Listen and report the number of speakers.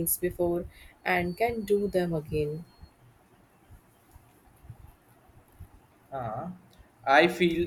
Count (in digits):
2